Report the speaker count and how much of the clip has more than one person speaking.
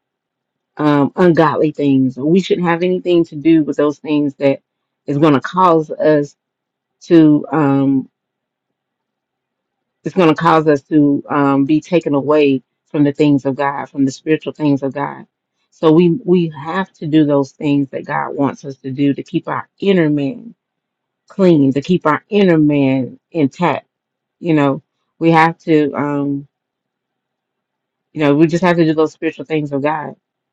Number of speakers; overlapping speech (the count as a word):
one, no overlap